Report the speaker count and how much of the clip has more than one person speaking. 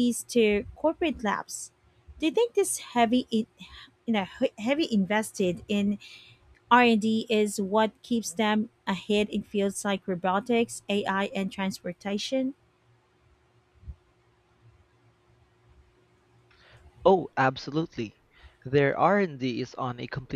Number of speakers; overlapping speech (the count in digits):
2, no overlap